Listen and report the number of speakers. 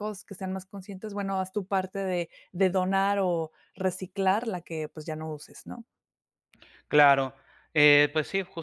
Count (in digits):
2